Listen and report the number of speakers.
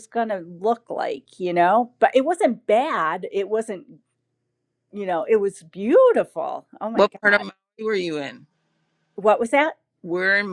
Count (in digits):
2